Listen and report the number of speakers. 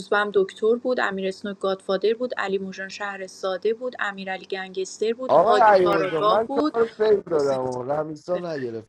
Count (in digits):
2